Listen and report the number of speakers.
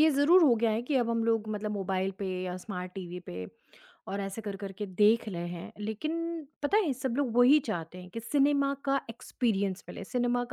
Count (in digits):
1